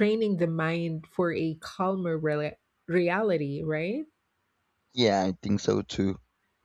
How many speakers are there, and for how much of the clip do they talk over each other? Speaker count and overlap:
2, no overlap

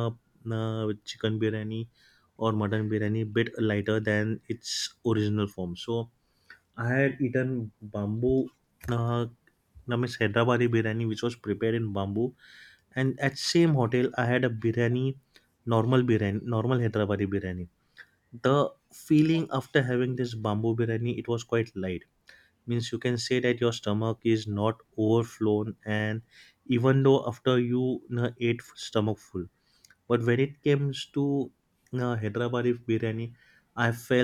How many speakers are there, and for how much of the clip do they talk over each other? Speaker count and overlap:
1, no overlap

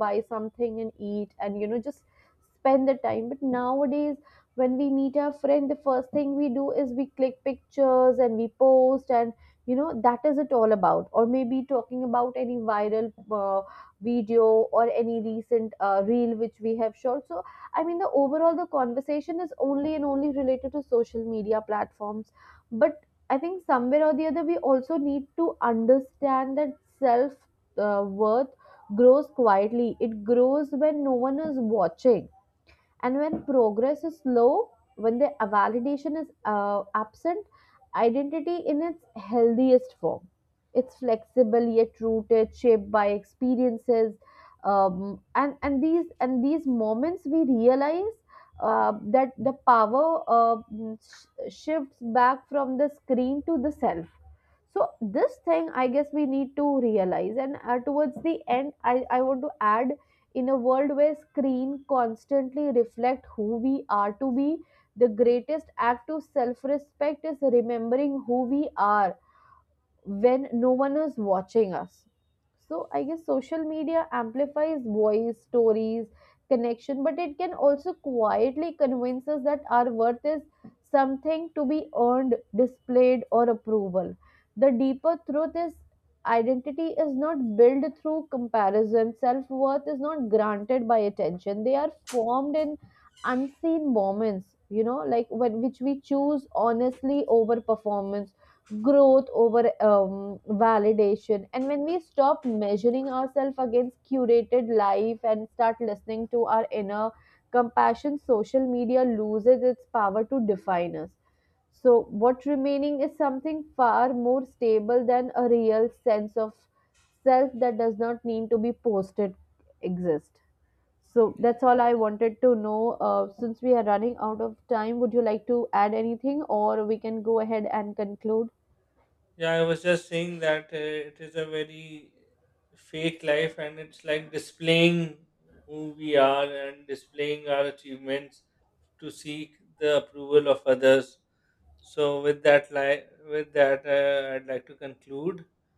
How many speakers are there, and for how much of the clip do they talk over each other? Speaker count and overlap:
2, no overlap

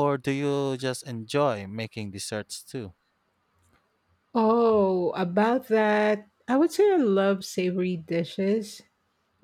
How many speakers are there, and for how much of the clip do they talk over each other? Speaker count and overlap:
2, no overlap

